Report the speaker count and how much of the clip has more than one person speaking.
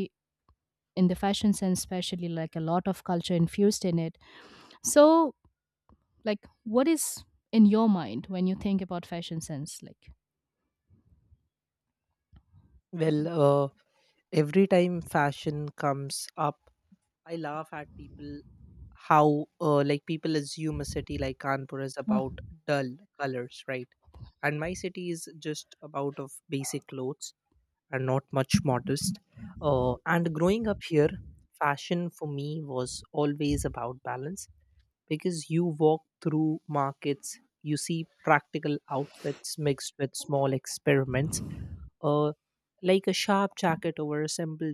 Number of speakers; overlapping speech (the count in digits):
2, under 1%